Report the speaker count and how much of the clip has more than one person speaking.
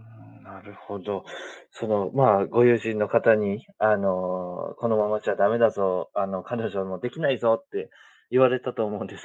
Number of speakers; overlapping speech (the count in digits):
1, no overlap